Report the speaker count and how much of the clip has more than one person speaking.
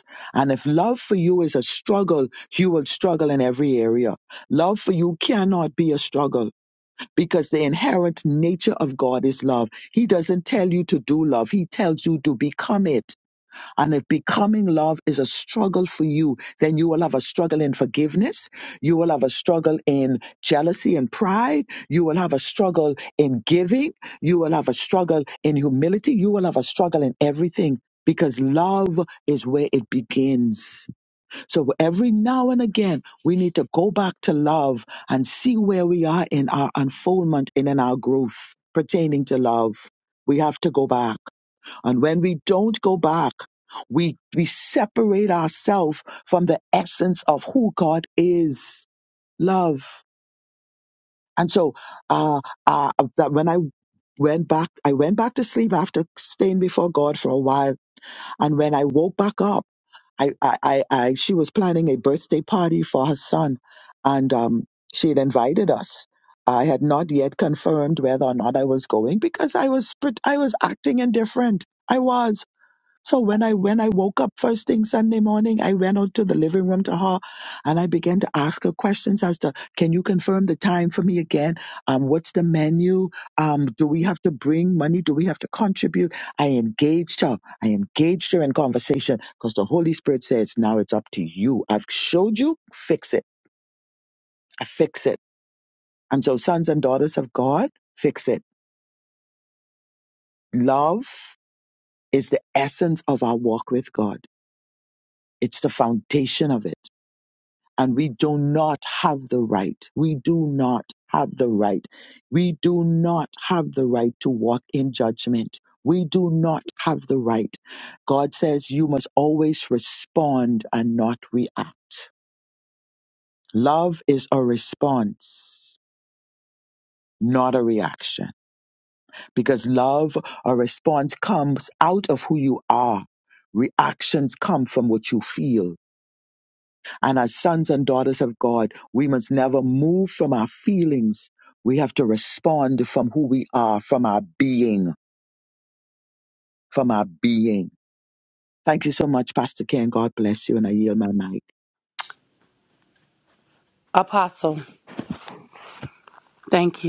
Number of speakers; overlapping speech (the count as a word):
two, no overlap